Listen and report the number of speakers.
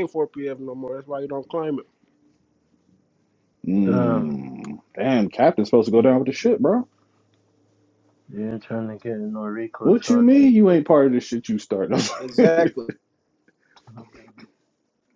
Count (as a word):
three